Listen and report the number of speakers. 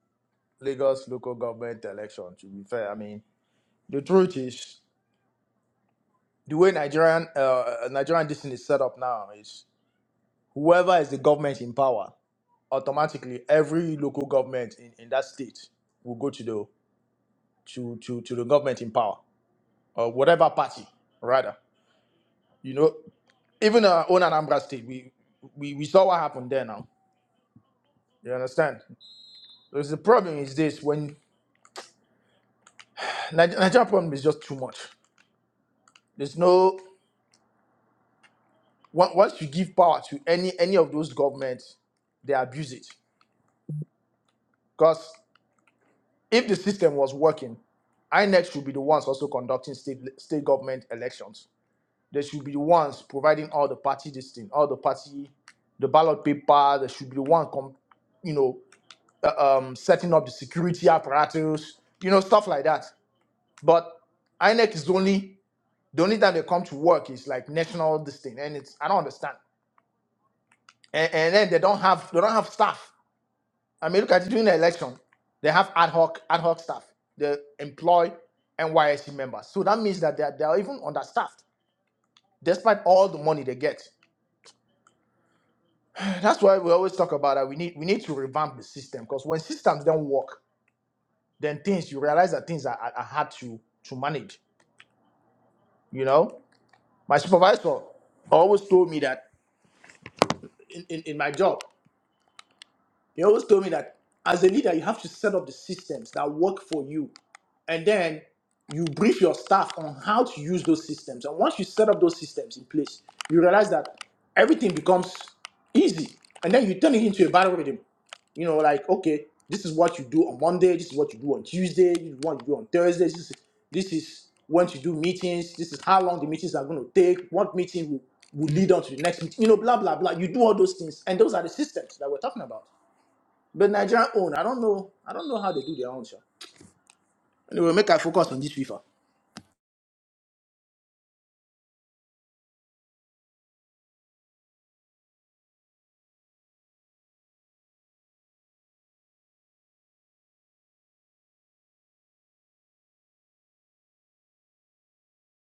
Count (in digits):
1